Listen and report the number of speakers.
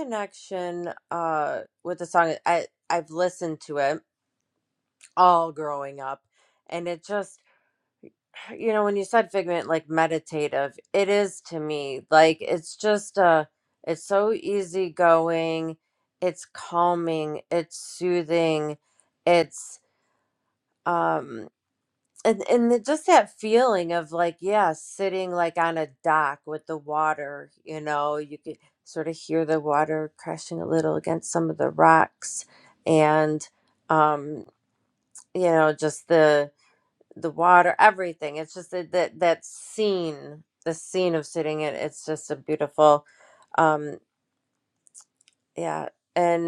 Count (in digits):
1